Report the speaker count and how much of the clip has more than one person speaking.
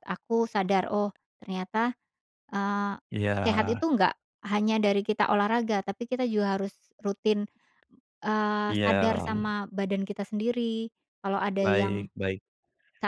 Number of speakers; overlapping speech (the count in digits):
2, about 11%